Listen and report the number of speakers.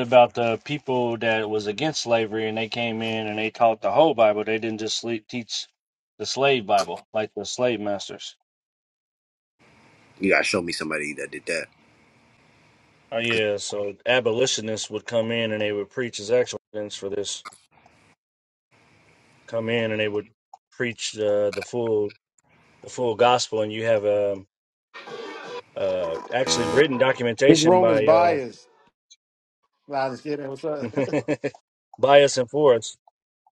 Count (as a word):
three